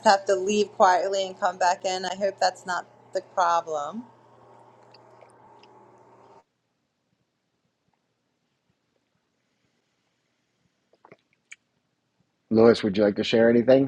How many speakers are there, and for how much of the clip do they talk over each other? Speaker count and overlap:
2, no overlap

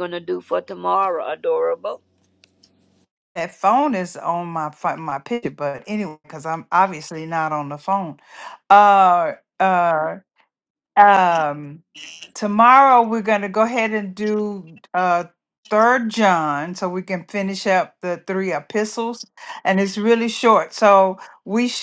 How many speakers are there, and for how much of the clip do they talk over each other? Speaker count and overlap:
2, no overlap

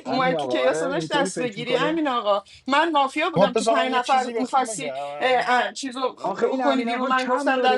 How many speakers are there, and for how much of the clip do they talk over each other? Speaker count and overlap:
3, about 61%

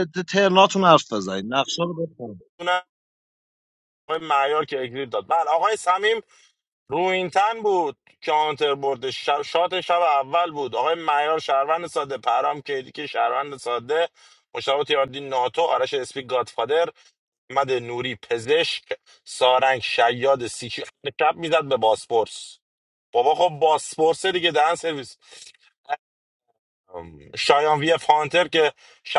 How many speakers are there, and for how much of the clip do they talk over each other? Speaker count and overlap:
2, no overlap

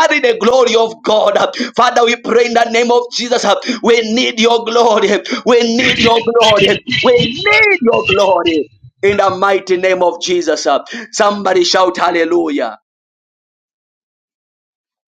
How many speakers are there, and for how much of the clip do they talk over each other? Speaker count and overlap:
1, no overlap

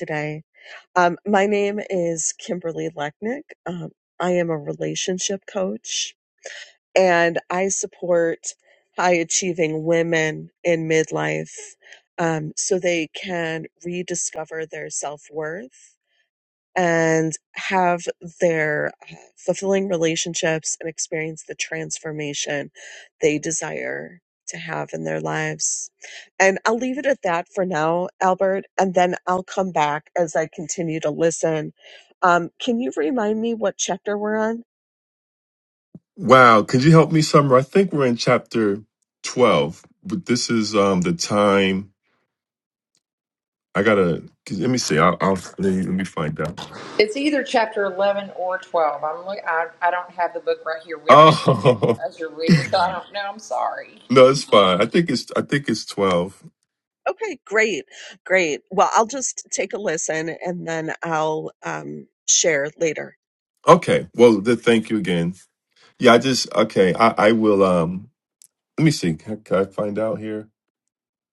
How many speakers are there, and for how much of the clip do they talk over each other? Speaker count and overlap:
3, under 1%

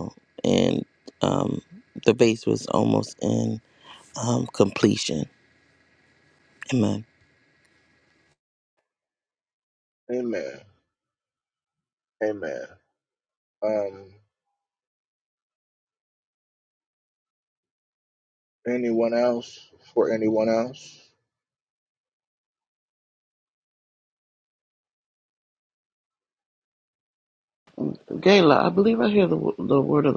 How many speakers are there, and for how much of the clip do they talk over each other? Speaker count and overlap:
3, no overlap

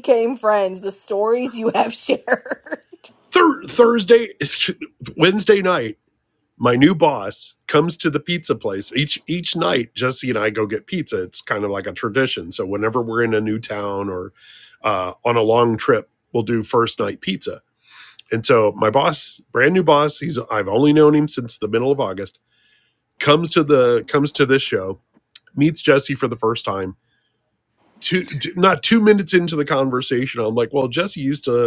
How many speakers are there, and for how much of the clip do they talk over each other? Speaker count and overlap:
2, no overlap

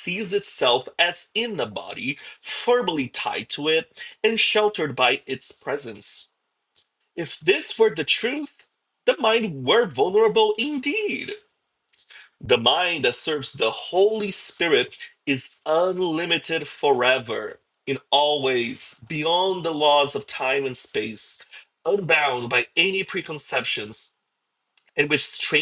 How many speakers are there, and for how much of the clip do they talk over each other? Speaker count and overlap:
1, no overlap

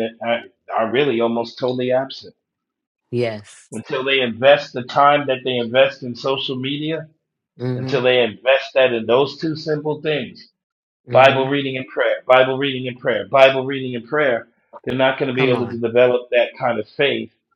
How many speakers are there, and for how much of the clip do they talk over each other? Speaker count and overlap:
2, about 6%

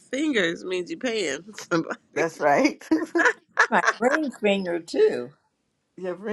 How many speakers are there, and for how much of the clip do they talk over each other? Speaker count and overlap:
3, about 1%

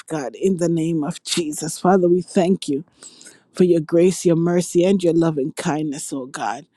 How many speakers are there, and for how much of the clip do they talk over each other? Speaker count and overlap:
1, no overlap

